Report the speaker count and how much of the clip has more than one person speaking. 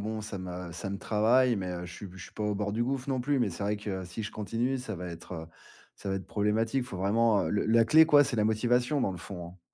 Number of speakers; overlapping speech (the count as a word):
one, no overlap